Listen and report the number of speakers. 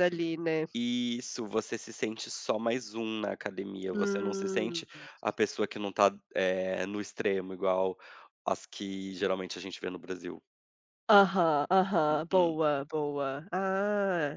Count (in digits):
2